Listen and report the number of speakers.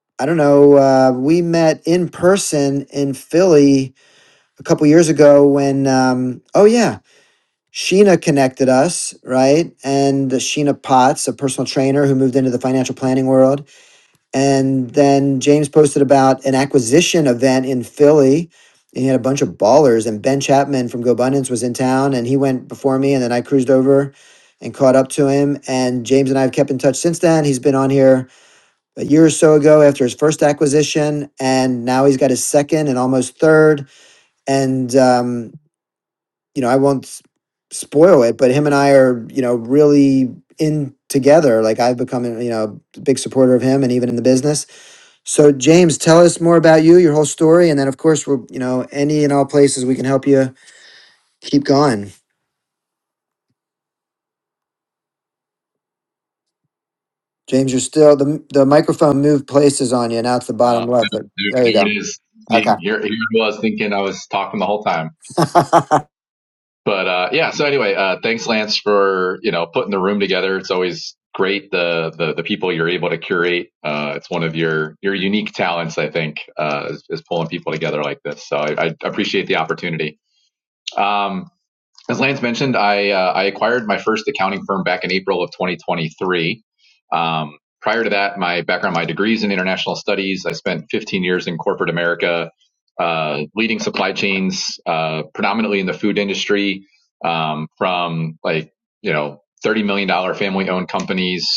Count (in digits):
2